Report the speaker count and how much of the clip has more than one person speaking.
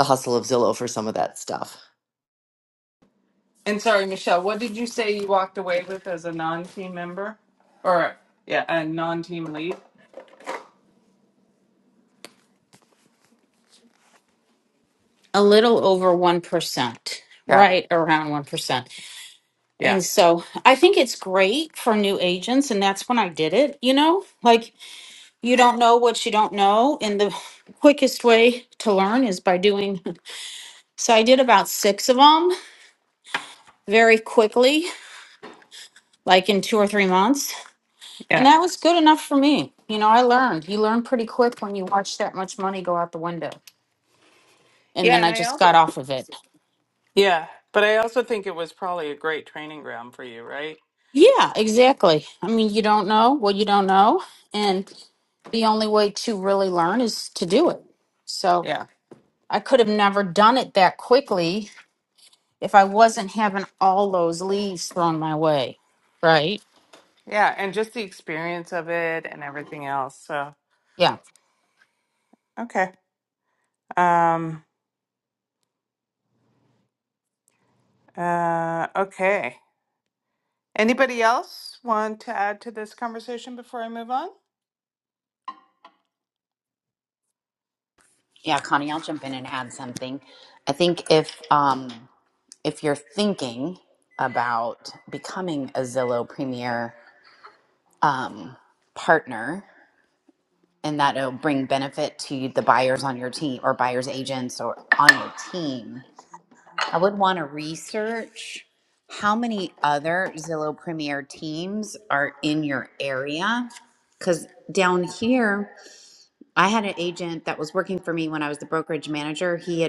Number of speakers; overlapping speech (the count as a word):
four, about 1%